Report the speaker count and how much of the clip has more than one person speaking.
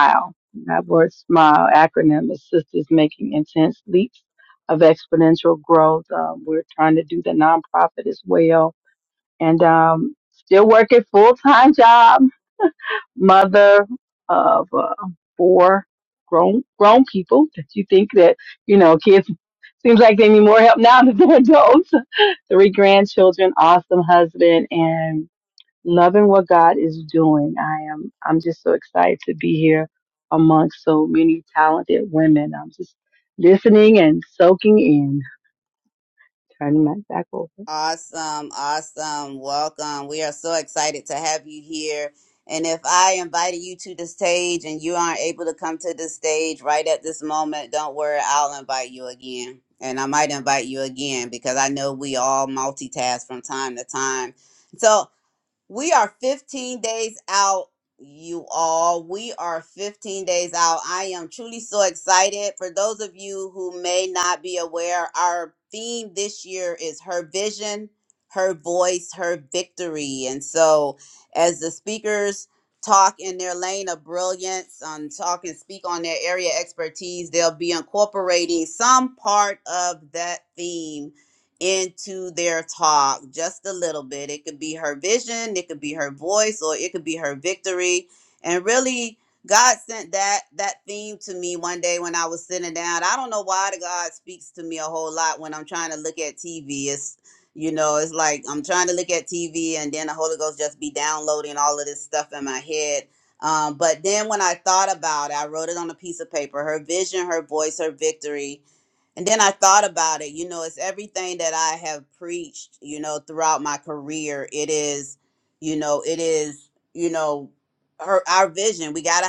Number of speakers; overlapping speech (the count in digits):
2, no overlap